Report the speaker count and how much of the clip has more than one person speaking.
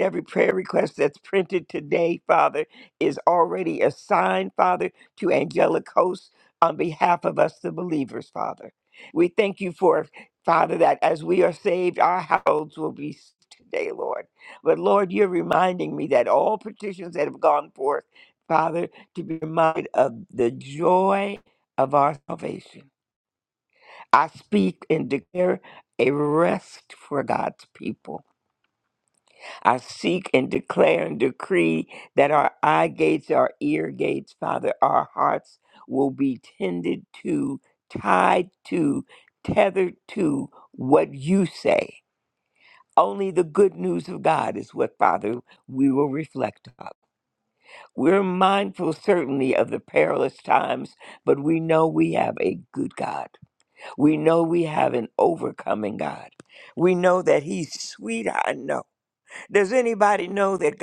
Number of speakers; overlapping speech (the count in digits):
1, no overlap